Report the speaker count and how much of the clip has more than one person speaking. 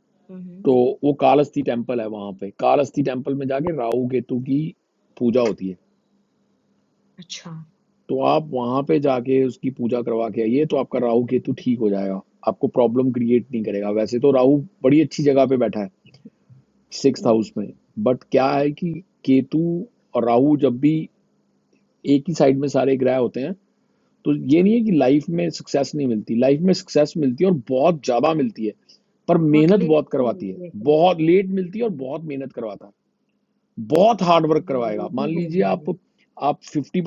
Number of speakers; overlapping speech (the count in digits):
2, about 10%